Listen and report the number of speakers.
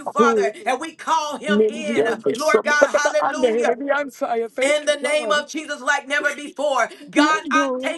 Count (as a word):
two